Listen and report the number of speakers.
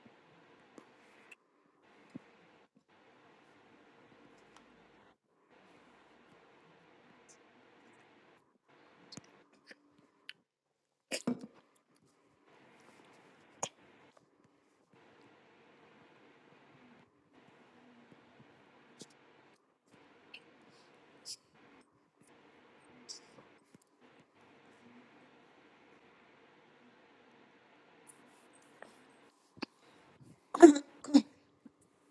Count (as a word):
zero